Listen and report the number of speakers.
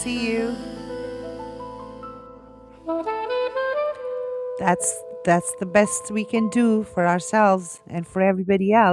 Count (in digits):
1